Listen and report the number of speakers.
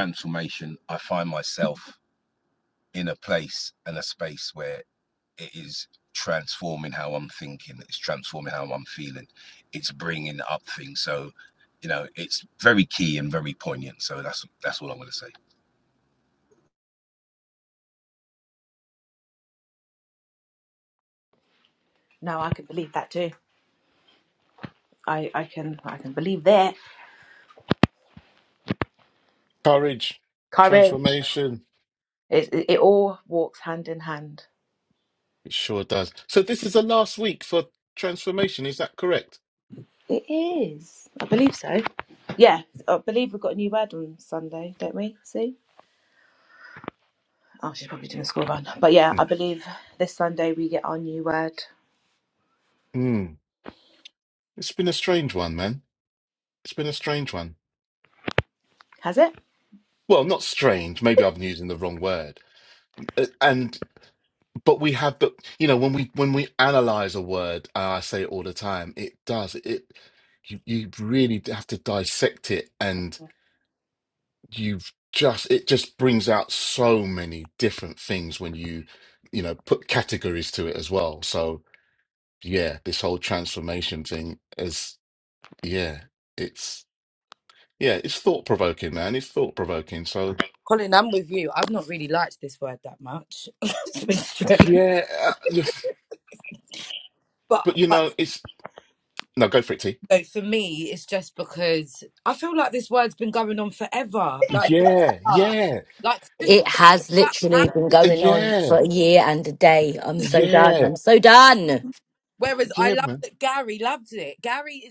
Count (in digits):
5